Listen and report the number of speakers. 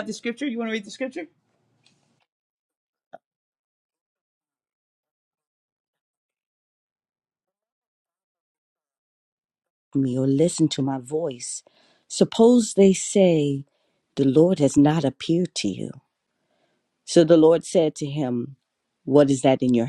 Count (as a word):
two